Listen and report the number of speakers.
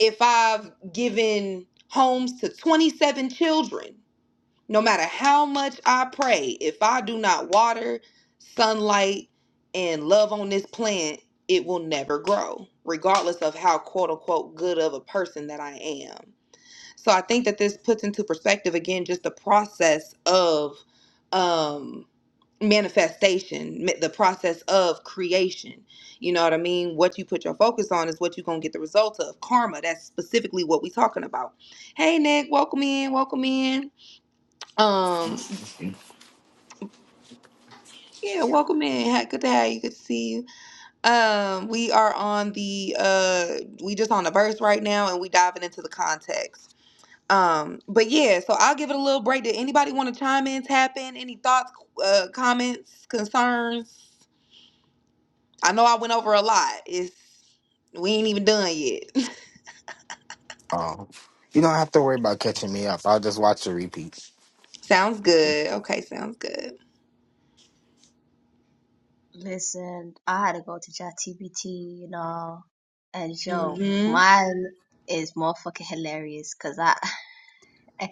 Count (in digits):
3